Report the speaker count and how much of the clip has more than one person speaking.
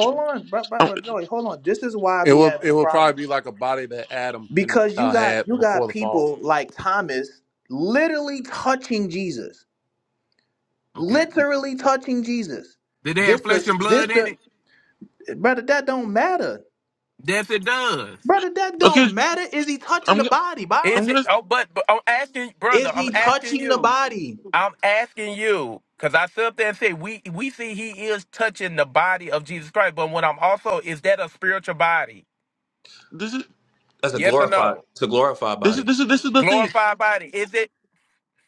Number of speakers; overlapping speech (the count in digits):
4, about 19%